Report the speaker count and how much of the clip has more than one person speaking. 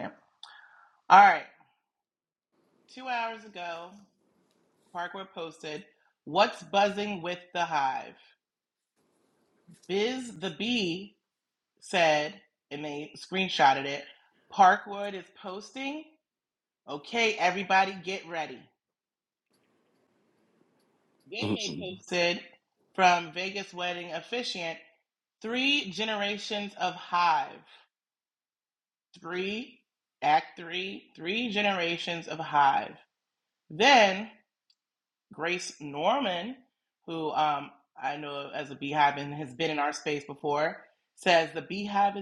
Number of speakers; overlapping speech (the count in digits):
1, no overlap